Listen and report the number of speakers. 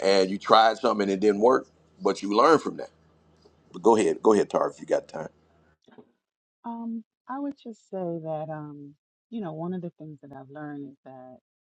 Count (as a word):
two